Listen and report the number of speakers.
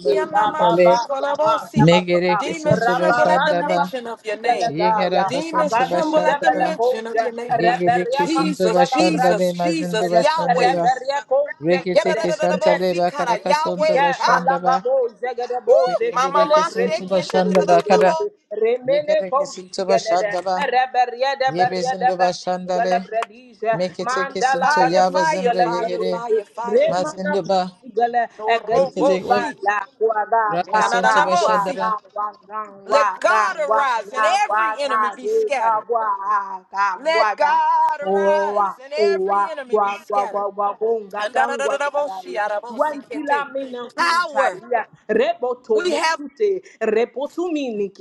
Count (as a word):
three